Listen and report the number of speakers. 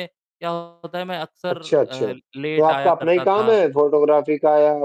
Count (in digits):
2